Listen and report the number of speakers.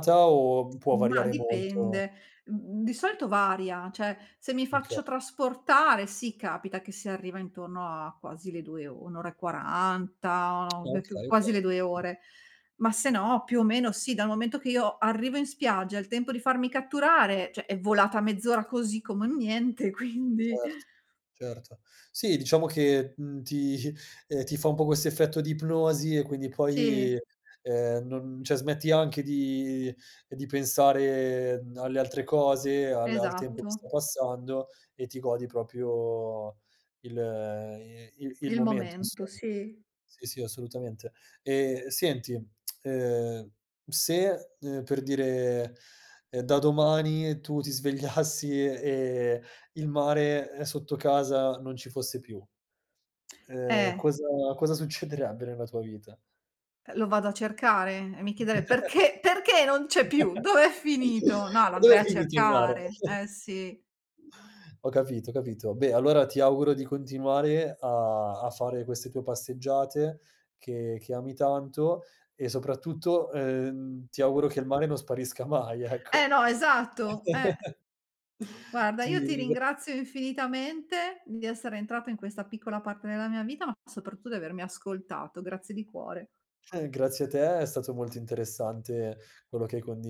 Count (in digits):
2